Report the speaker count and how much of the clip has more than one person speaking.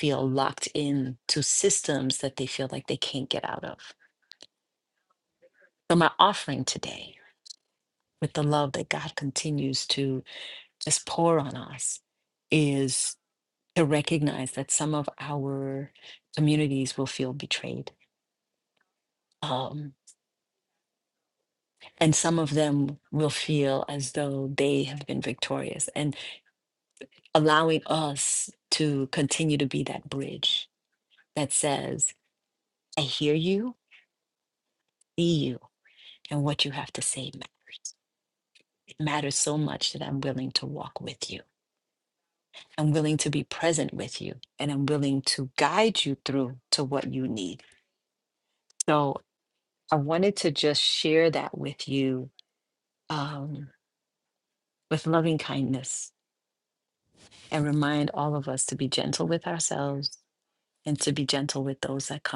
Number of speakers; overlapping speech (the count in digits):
1, no overlap